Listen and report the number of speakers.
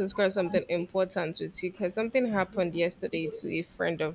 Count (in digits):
1